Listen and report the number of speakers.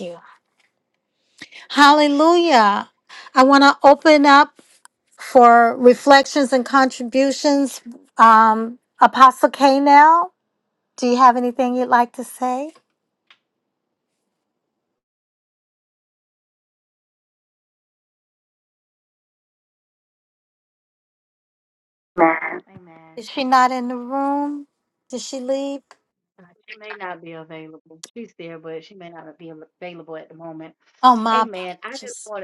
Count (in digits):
2